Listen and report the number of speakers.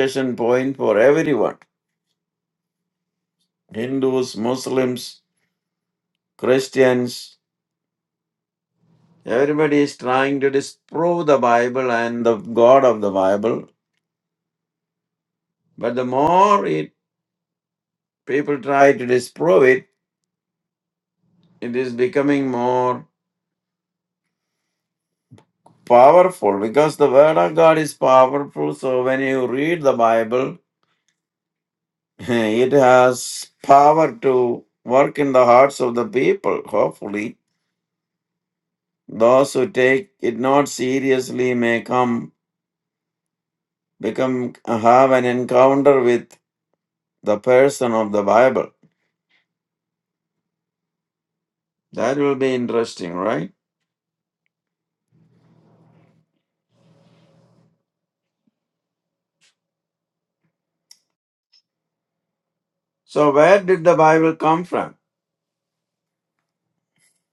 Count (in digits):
1